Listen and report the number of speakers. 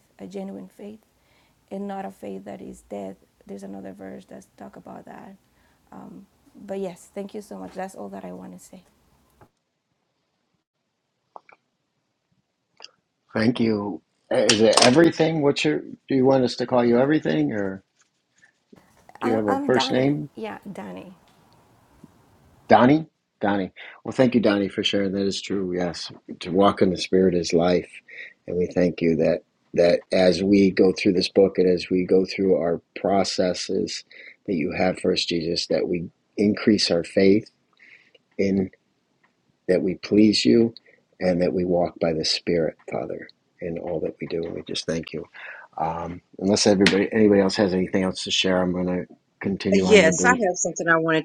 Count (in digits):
3